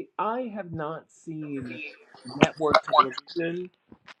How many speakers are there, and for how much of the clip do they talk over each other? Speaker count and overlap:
1, no overlap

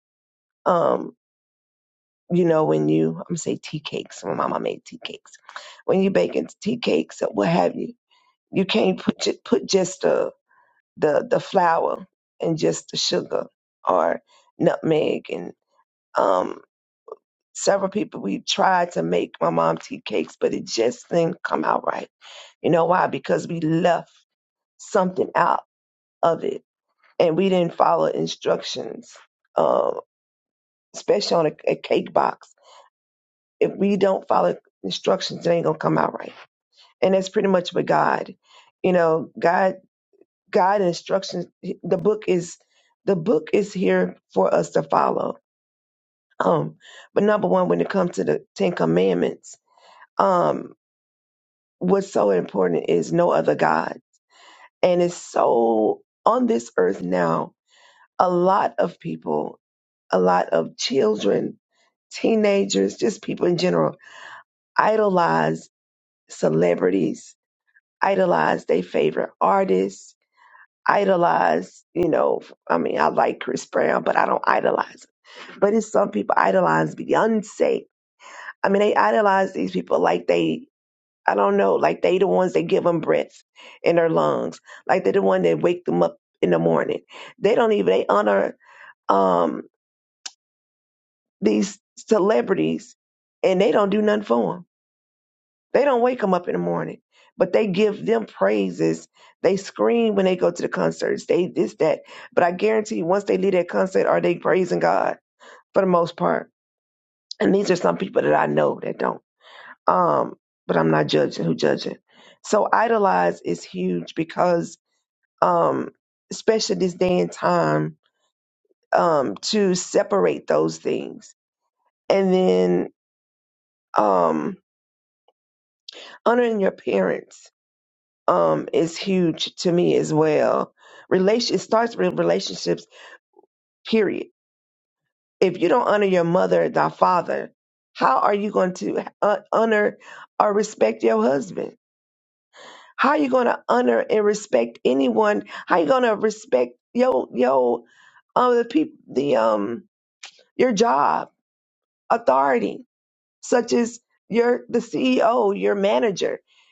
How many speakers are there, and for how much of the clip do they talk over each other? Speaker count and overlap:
1, no overlap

